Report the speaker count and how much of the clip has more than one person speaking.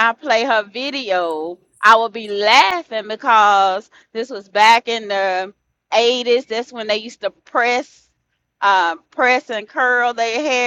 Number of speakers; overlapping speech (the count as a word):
one, no overlap